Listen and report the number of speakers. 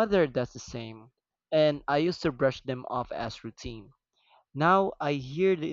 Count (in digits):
1